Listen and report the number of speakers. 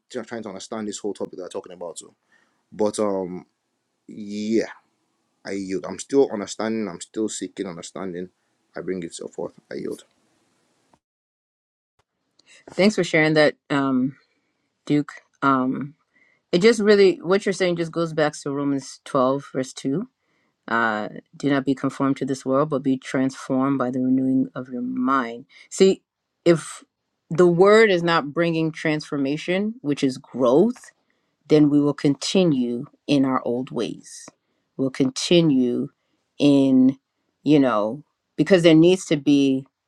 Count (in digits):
2